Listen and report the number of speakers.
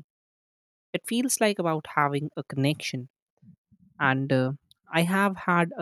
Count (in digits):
1